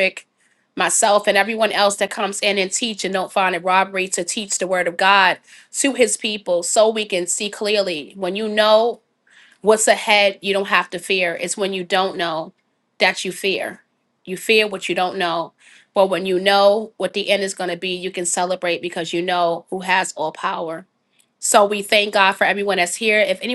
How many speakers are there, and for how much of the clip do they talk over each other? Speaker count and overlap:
one, no overlap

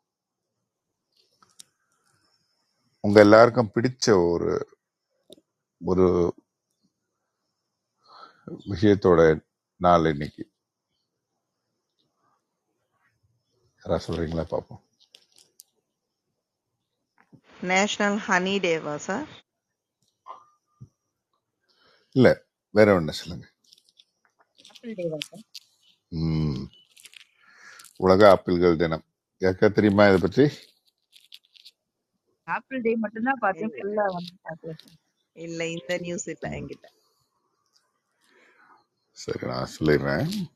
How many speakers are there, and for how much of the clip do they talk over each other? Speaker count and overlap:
three, about 1%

